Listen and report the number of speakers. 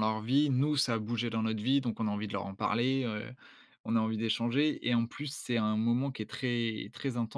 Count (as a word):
one